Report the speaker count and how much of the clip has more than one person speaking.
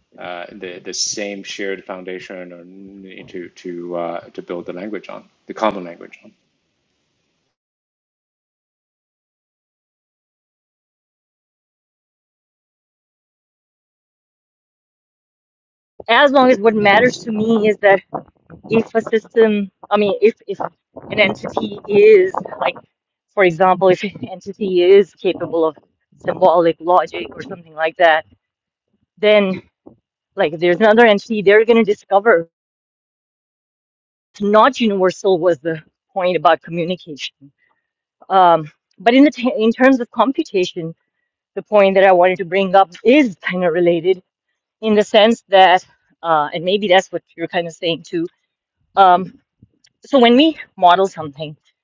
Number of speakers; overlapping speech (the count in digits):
2, no overlap